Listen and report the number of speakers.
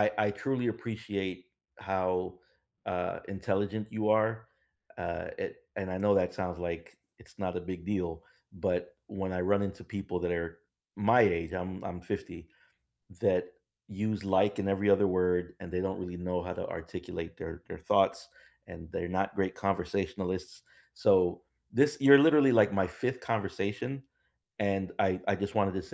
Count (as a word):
one